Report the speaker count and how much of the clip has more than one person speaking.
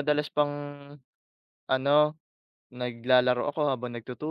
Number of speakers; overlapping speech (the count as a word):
one, no overlap